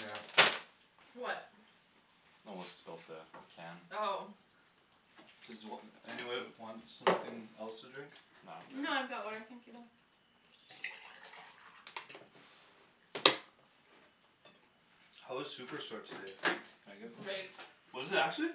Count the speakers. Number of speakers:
4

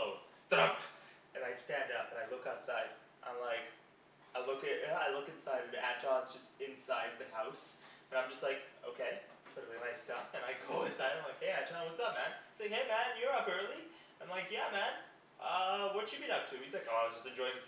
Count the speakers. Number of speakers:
1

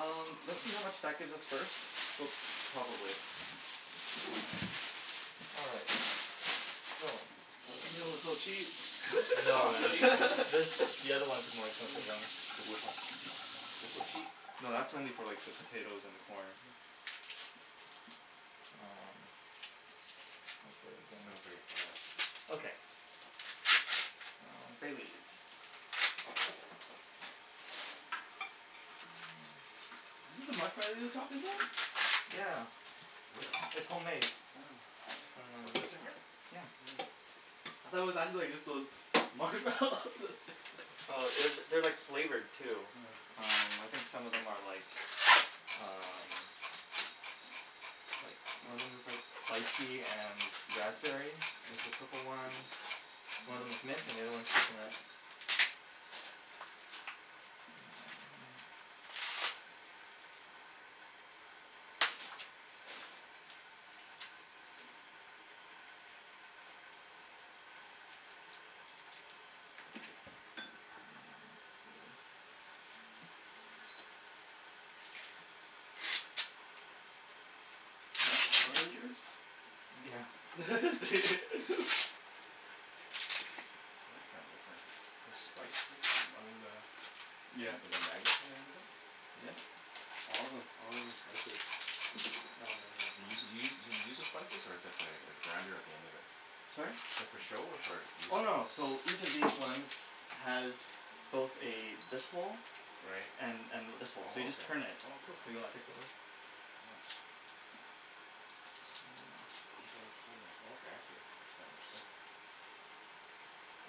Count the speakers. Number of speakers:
3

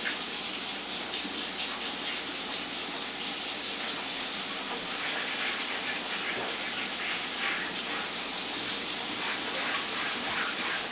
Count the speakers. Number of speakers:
0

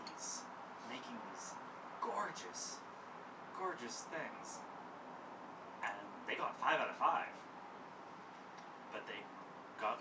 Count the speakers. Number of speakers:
1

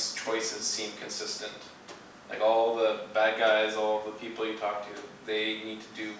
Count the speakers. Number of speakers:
1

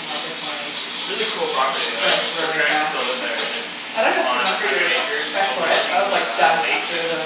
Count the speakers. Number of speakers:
2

